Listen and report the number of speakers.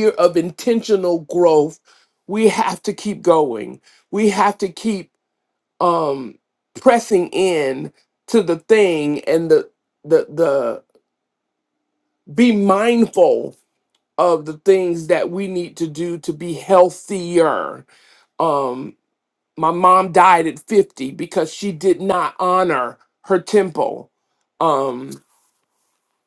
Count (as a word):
one